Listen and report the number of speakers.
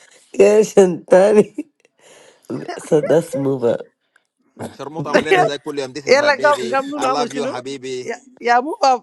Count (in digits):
3